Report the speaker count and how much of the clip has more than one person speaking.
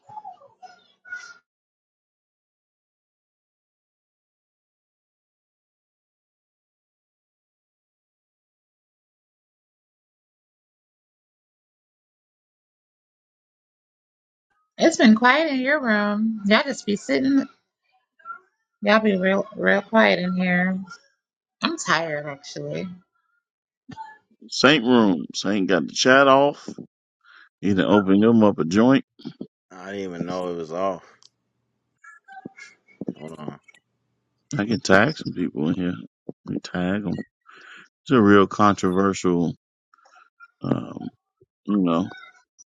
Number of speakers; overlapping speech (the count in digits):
3, no overlap